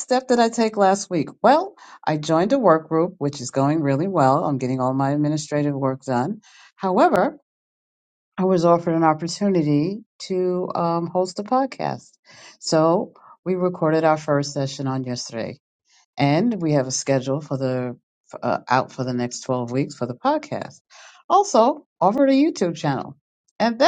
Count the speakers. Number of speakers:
one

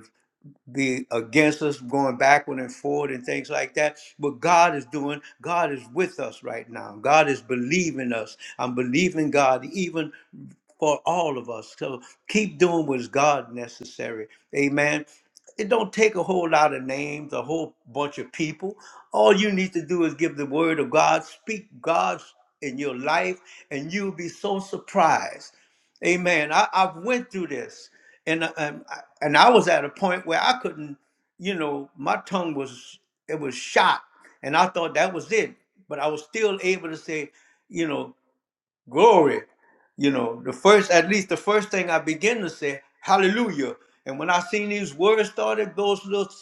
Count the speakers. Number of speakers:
one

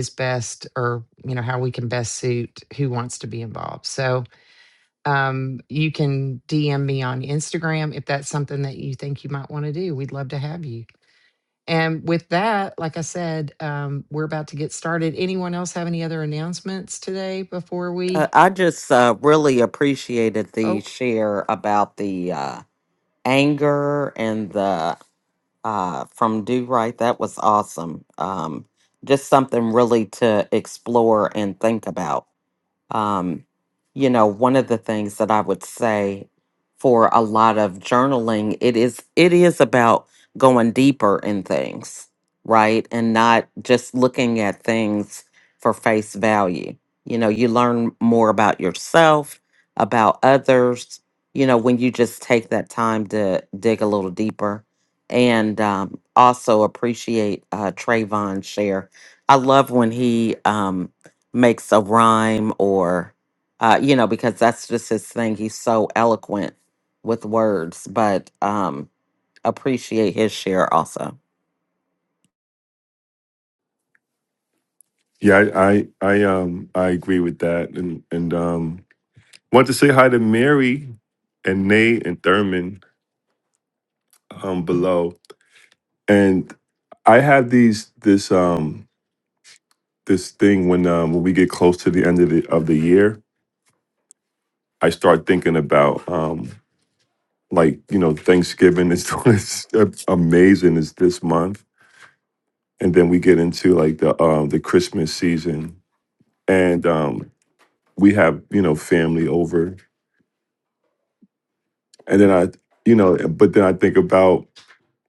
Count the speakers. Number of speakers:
three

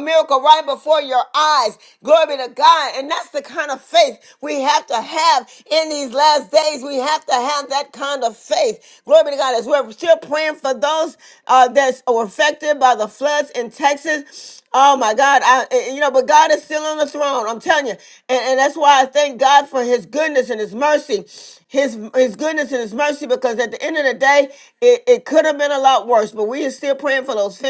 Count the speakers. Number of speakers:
one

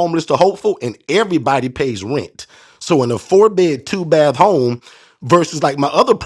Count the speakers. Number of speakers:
one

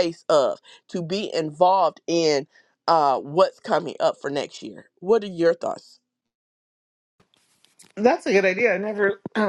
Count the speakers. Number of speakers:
two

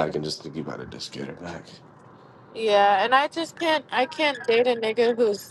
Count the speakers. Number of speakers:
two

